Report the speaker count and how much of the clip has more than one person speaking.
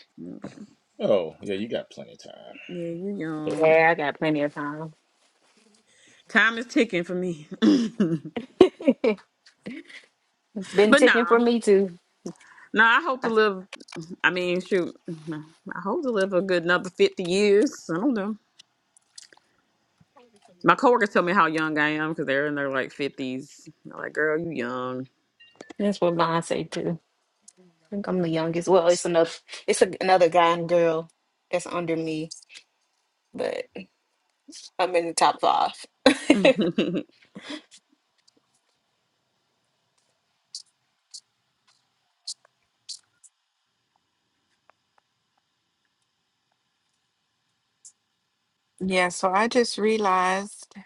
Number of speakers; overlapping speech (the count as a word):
four, about 2%